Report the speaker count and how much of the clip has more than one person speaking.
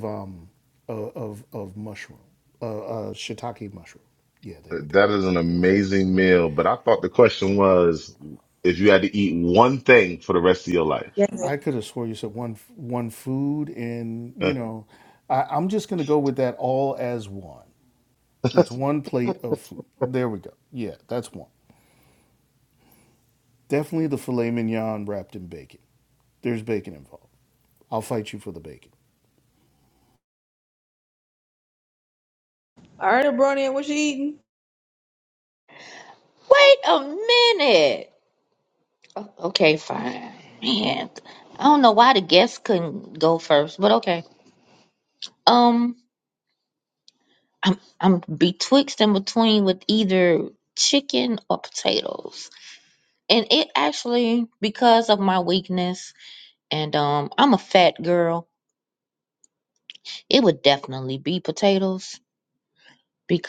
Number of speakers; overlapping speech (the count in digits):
4, about 1%